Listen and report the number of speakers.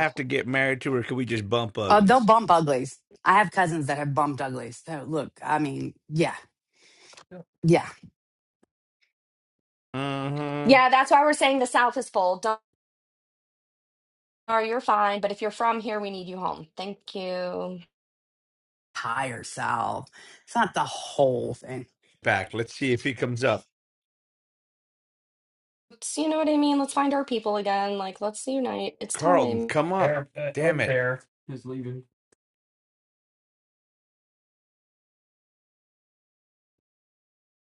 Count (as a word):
four